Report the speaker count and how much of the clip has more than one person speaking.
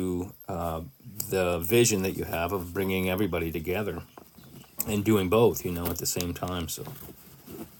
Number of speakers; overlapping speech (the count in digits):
1, no overlap